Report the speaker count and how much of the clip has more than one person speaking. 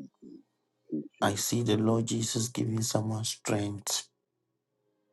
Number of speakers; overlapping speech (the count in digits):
2, about 14%